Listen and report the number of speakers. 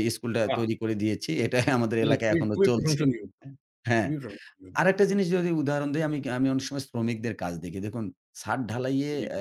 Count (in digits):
2